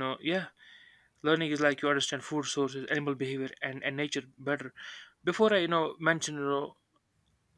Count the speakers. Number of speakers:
one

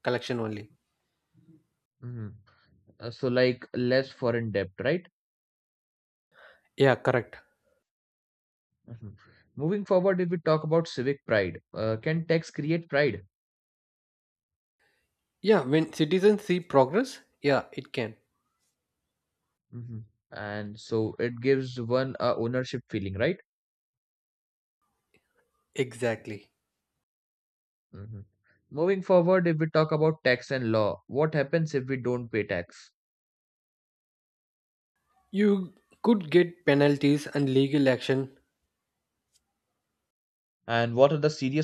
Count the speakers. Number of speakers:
two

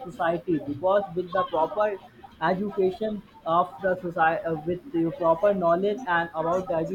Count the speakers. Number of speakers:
one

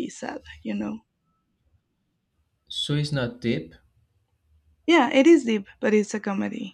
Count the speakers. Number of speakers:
two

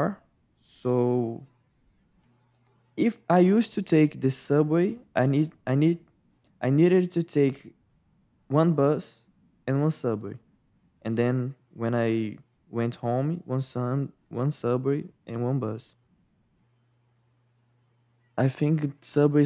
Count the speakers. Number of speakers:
one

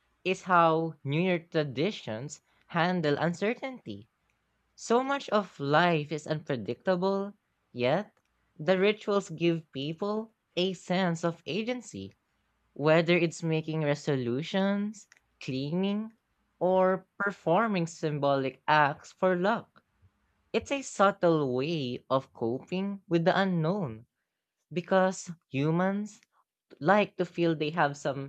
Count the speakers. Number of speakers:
one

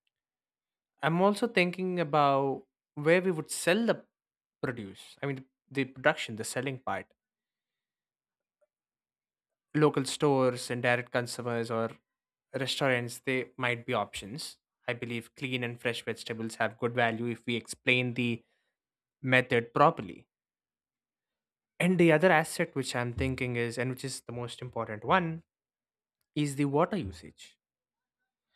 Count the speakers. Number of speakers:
one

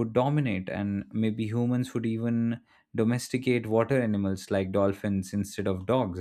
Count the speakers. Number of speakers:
one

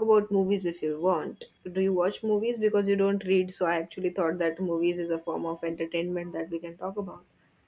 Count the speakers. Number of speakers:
one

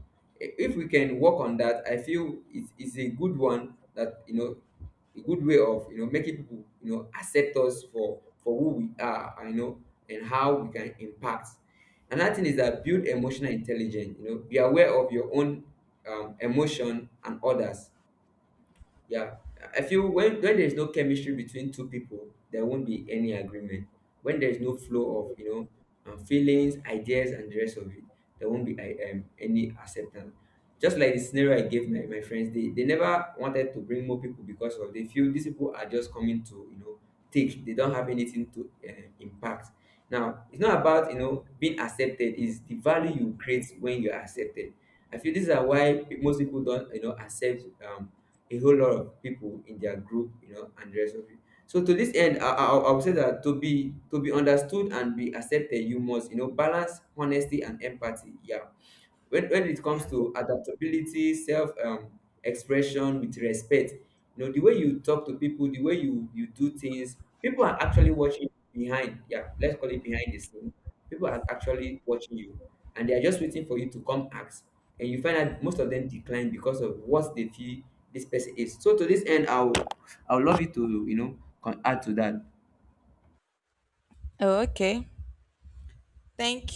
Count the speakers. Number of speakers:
two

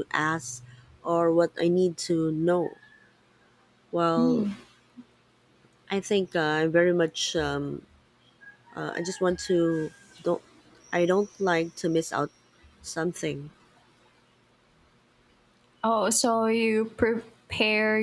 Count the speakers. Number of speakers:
two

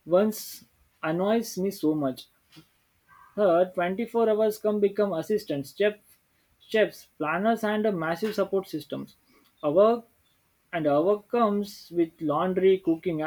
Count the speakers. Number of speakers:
one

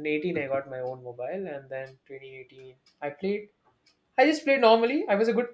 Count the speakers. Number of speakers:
one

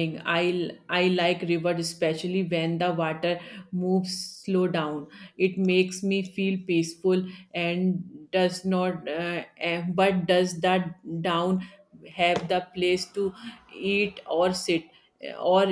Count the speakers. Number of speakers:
one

